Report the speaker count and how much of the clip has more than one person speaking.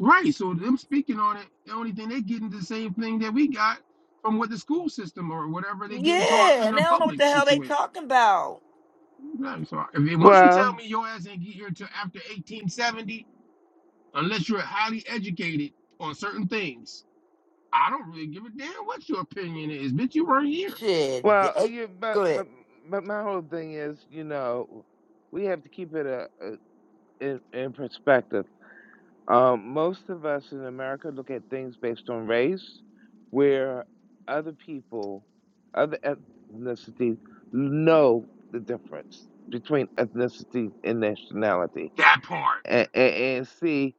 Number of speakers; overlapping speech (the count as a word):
three, about 7%